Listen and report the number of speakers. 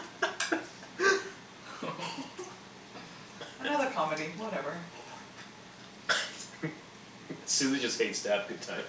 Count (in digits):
2